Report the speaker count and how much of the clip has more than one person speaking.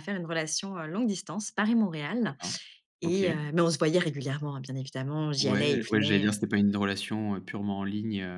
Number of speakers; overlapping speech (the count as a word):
two, about 16%